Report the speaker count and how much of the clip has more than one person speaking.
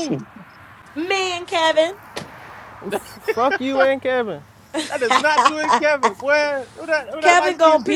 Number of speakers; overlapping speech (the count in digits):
3, about 10%